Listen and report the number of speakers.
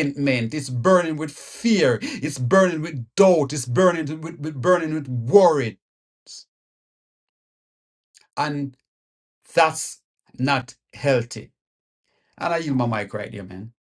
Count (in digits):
1